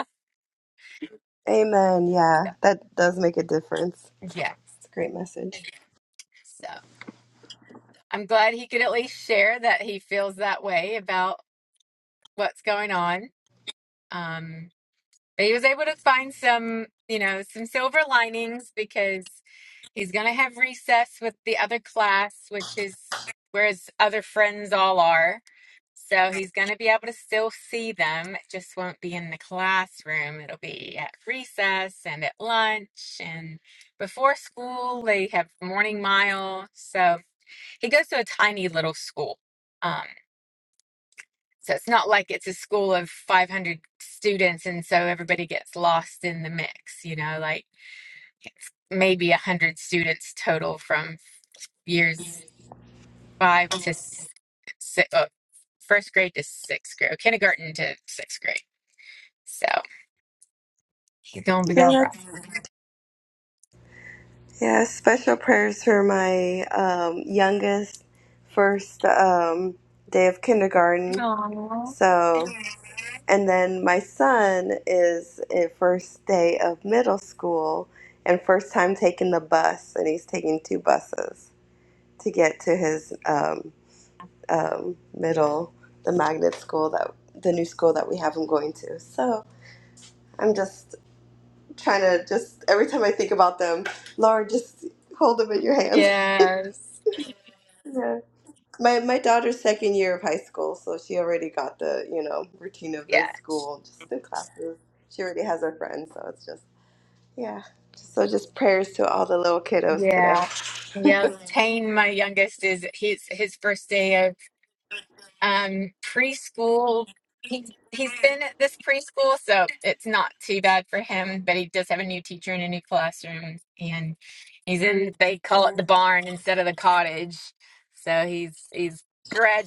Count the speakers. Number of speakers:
2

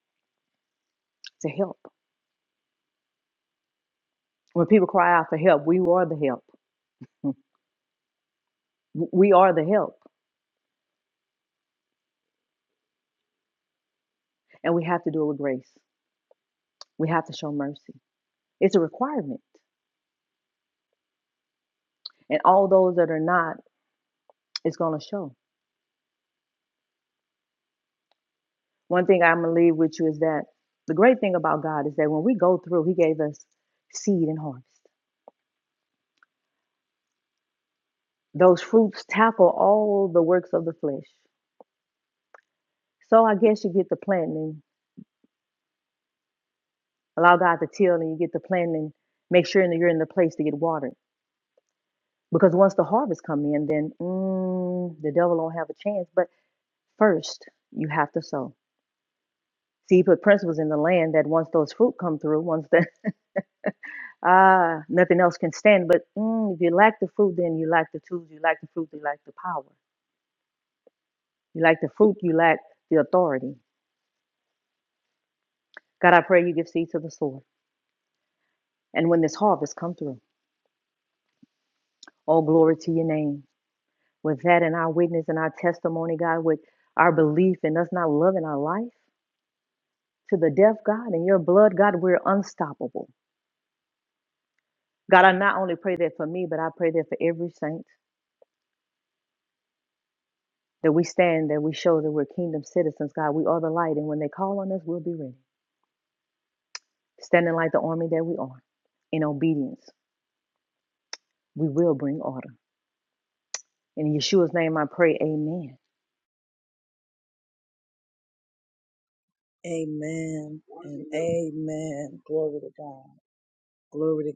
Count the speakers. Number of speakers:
2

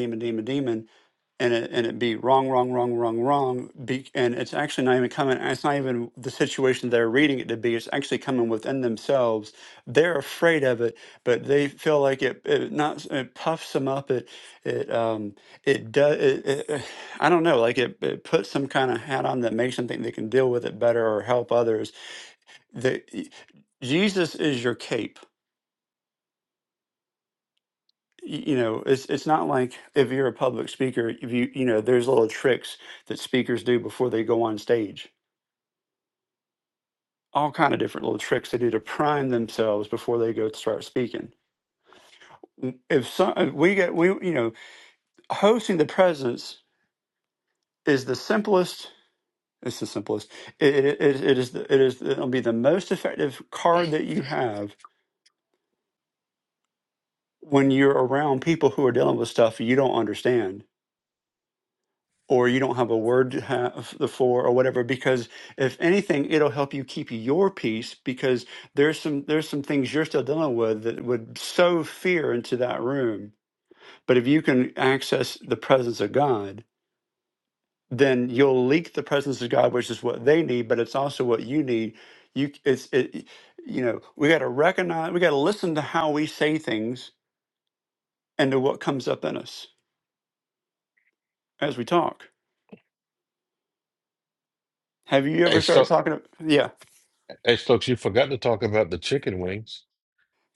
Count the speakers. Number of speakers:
2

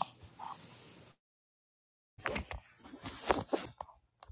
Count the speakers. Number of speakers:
0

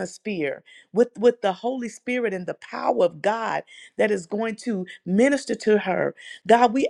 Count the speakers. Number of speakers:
1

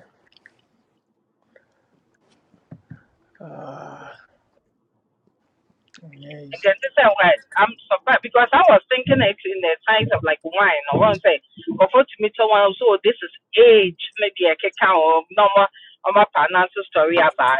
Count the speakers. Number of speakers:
2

